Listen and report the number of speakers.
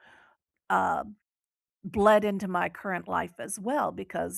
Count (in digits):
1